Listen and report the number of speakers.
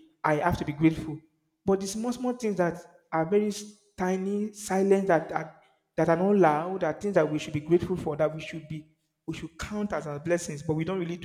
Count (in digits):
1